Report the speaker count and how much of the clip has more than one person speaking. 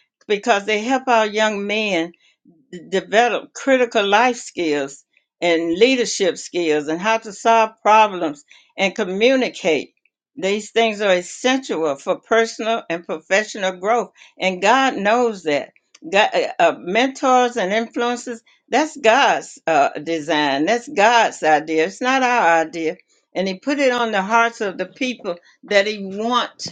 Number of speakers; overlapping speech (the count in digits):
1, no overlap